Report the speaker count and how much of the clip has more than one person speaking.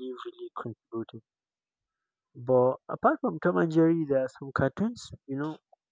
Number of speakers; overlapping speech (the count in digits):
1, no overlap